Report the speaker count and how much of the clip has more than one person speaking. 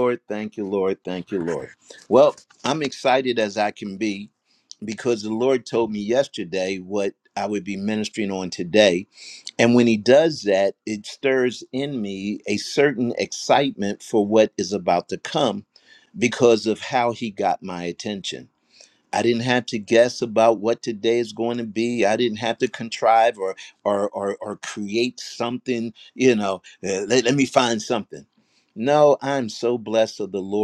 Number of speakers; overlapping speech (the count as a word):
one, no overlap